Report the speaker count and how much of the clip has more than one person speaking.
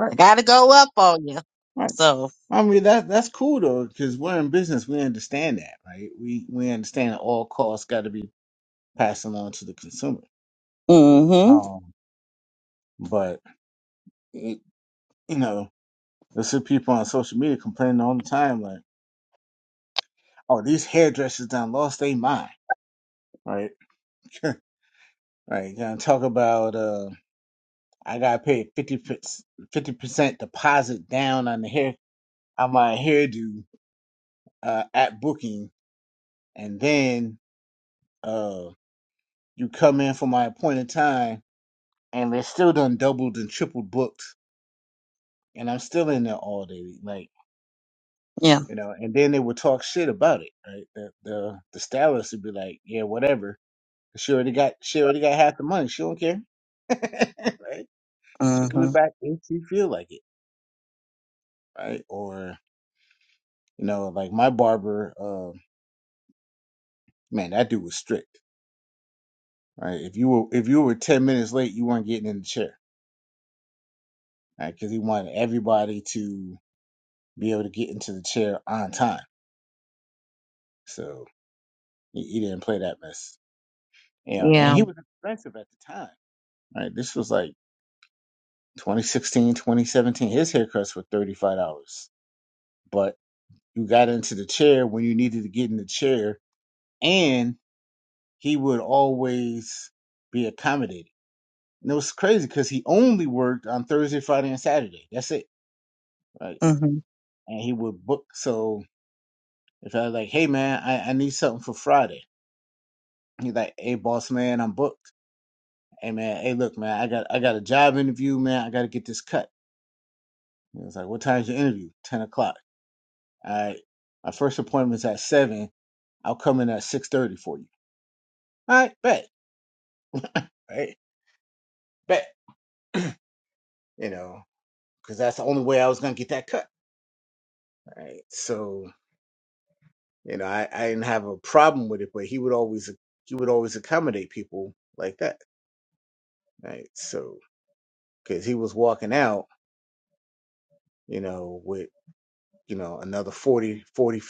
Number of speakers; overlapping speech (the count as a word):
two, about 1%